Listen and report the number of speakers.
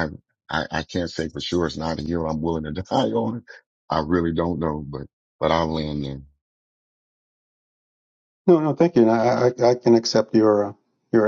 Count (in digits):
2